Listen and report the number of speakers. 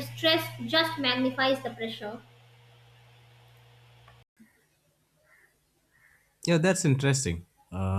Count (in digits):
2